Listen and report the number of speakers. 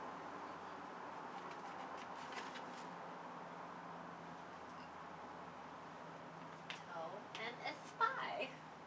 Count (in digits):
1